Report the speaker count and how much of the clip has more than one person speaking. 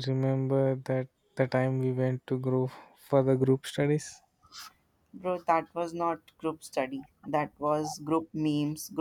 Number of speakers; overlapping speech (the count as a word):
two, no overlap